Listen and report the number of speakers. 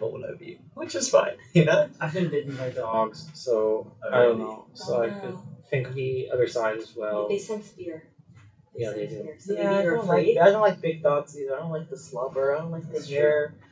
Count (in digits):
4